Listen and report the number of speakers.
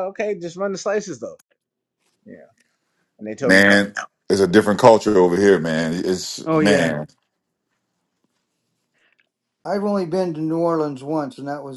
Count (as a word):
three